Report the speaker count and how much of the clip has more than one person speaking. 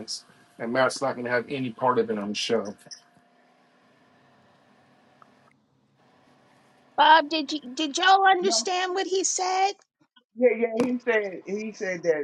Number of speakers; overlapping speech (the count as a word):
three, about 2%